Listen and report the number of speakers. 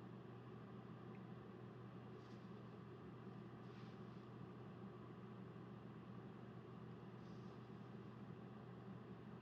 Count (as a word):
zero